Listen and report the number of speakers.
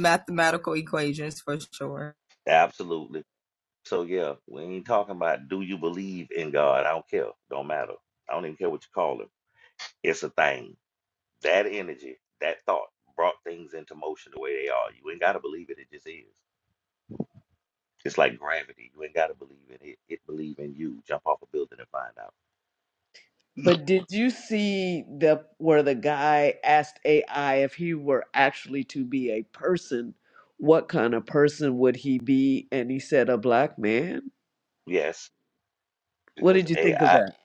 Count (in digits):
3